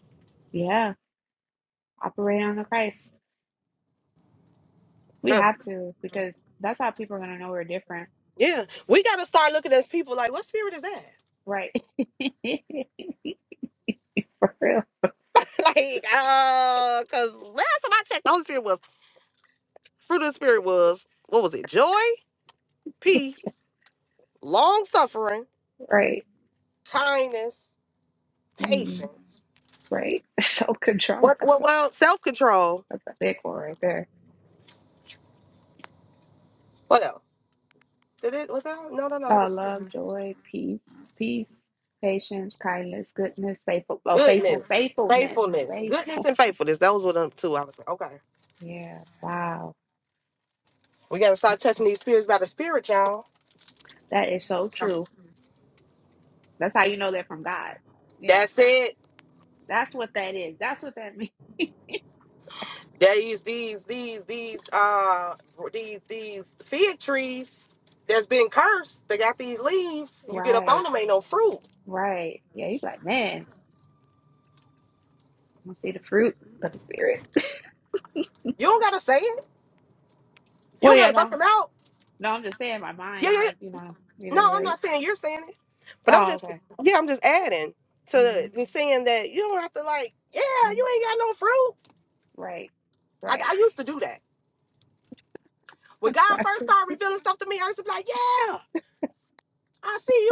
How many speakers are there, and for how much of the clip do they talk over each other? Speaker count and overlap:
2, about 7%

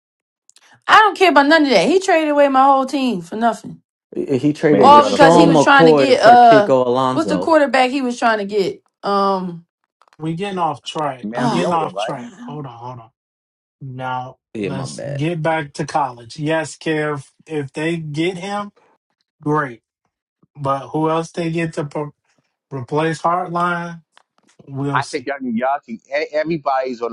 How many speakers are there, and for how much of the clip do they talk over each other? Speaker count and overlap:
4, about 16%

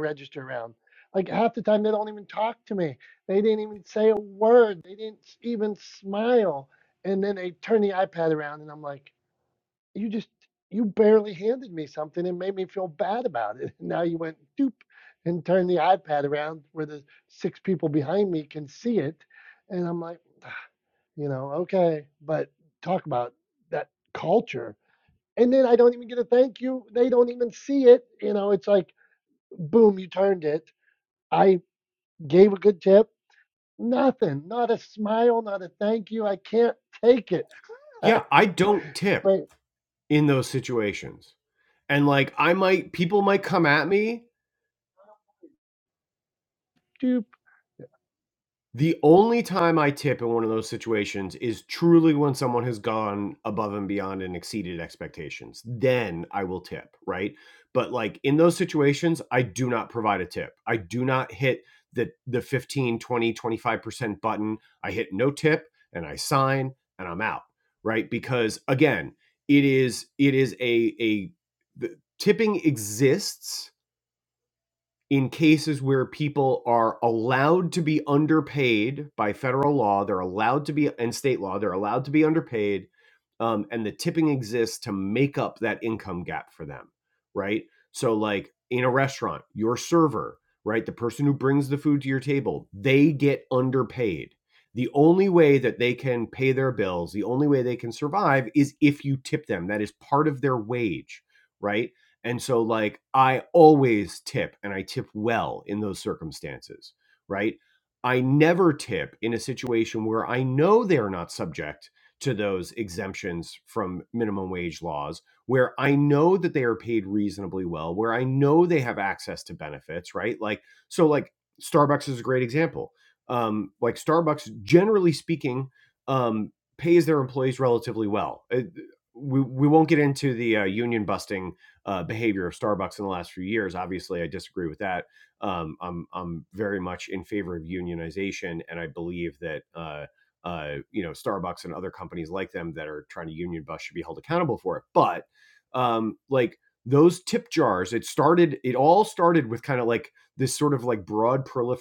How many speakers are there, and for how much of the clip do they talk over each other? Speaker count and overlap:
2, under 1%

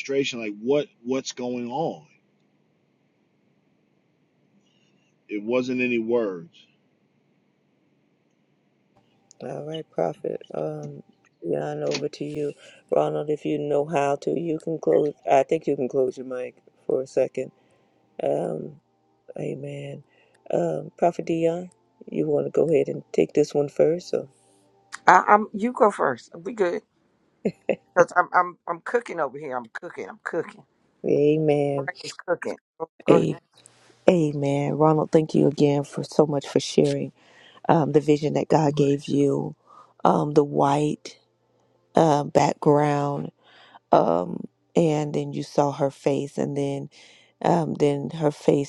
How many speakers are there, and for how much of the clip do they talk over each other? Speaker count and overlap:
3, about 1%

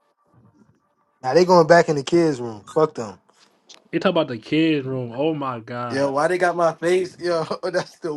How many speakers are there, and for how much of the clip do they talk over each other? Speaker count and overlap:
3, about 3%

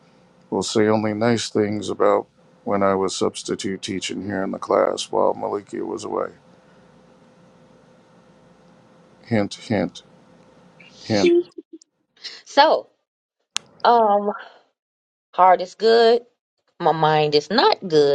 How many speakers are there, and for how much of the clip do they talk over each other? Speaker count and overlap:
2, no overlap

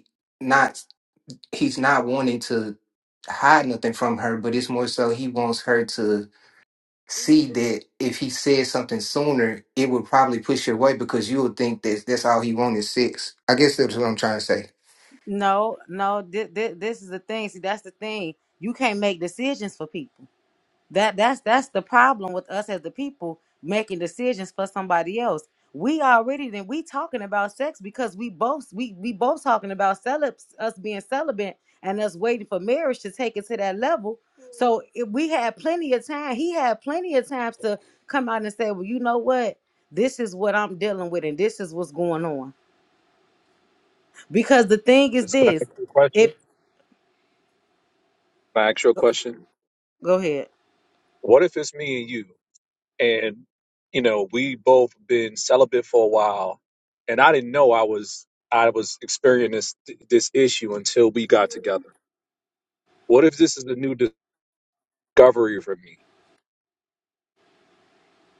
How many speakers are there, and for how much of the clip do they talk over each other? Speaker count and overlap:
3, about 1%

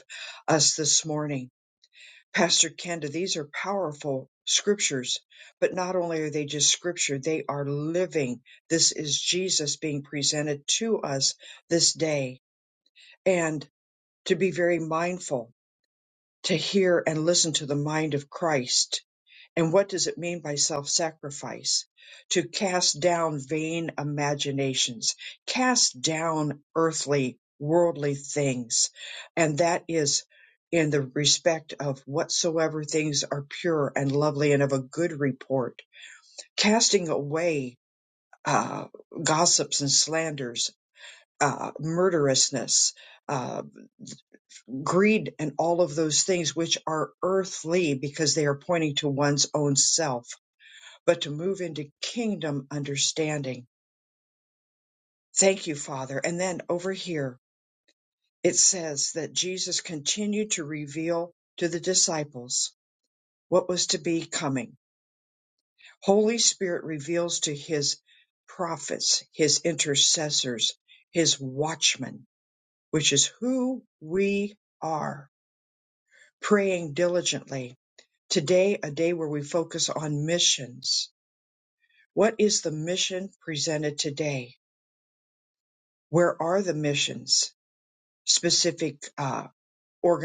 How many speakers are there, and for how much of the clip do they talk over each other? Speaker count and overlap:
1, no overlap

